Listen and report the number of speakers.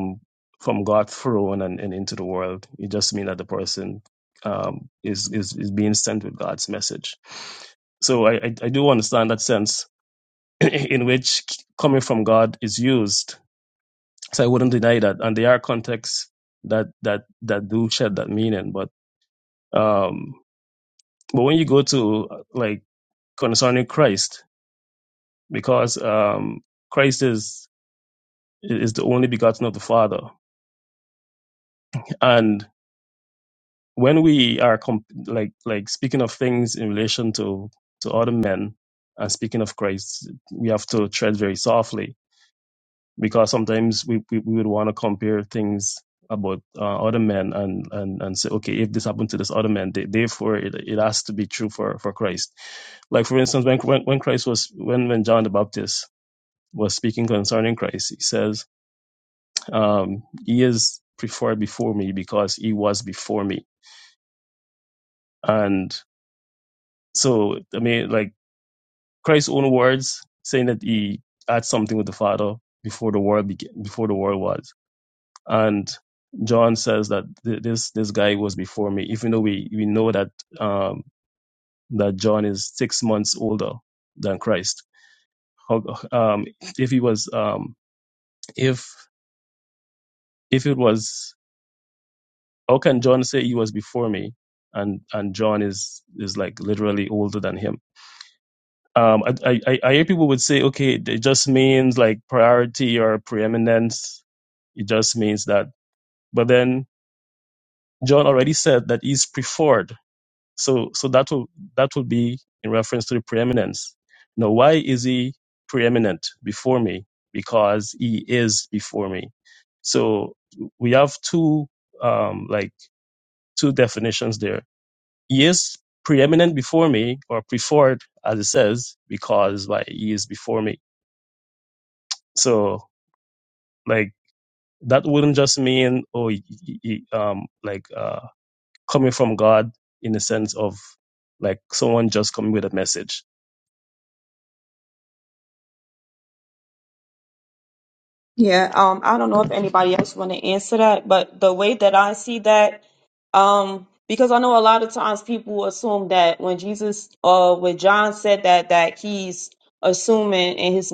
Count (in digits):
2